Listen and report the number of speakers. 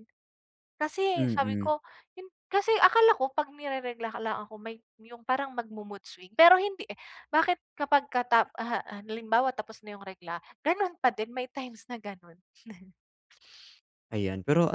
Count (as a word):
two